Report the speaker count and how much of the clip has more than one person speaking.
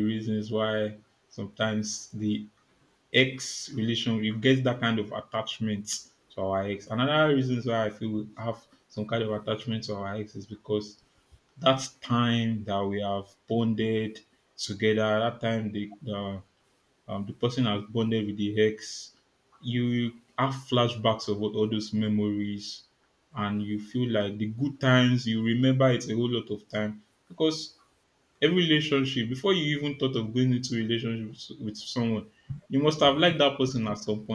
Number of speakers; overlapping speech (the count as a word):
one, no overlap